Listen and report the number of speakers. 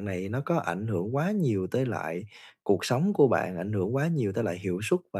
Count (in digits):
1